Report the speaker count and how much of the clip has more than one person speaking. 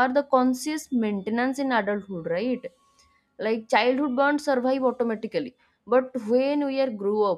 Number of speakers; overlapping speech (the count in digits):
1, no overlap